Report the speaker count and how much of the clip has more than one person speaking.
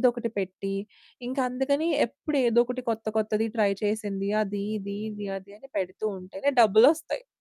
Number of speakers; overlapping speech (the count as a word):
one, no overlap